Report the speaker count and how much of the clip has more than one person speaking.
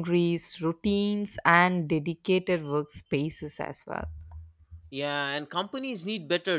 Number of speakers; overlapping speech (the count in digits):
2, no overlap